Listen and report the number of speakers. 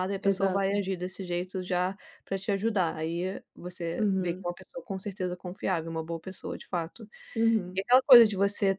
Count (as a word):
two